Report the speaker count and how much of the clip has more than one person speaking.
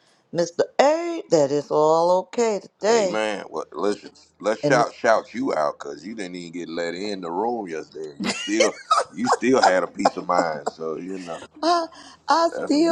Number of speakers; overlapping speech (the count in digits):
2, about 7%